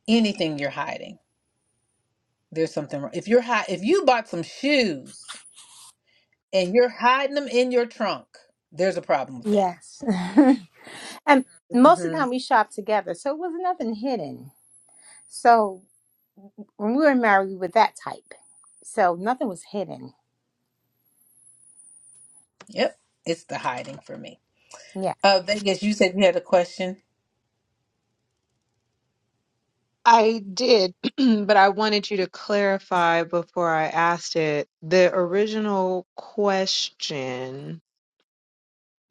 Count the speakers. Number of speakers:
three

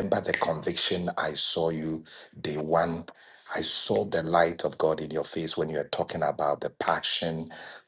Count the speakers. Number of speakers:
one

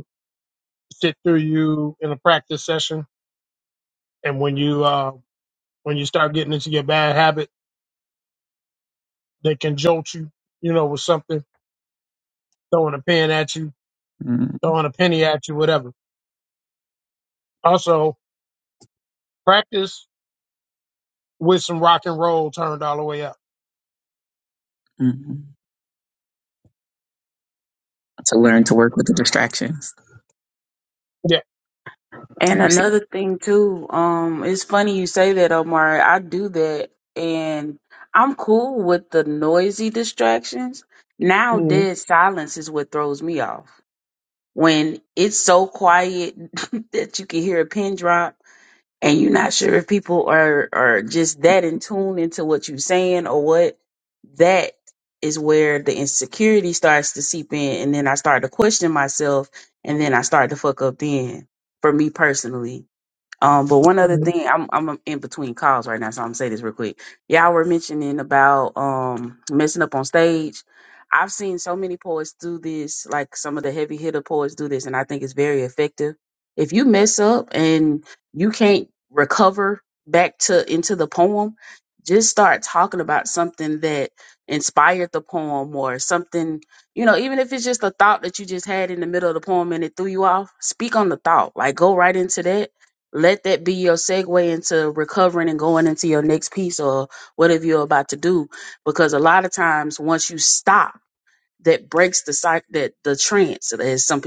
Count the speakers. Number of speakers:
three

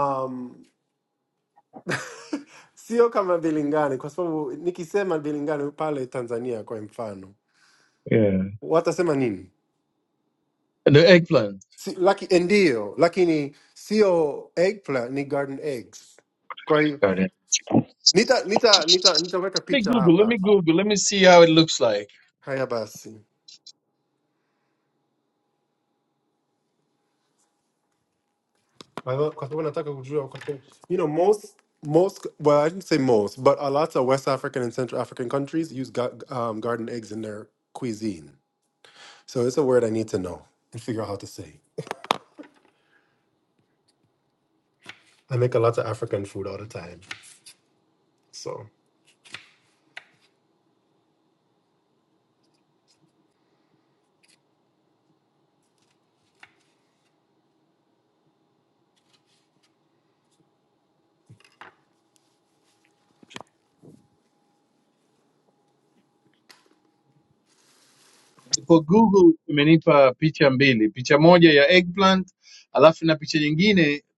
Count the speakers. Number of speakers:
two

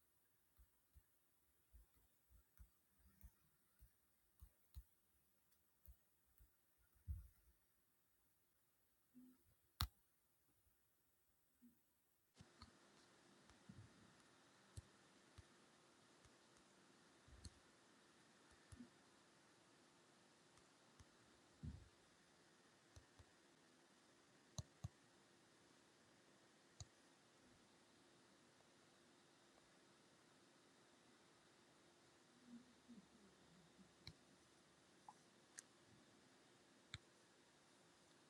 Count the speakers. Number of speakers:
zero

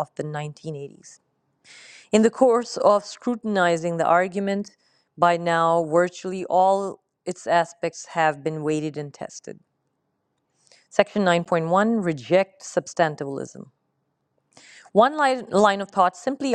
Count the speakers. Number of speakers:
one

